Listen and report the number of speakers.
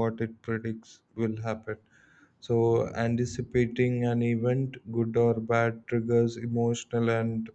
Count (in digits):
1